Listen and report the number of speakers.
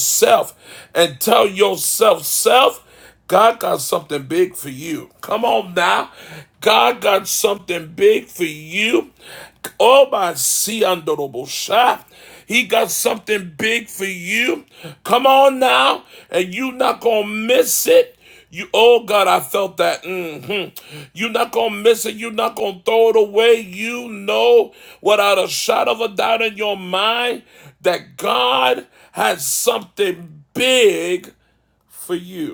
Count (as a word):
one